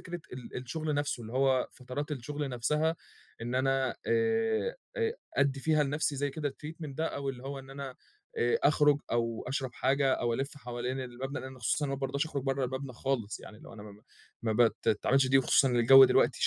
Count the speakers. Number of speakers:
one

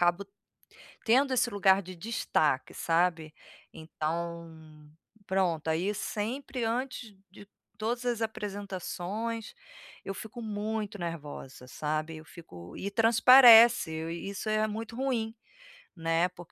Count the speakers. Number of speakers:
one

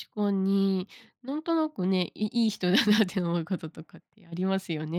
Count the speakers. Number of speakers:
one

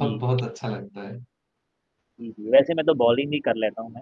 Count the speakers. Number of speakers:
two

